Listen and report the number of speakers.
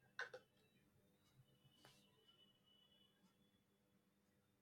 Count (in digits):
0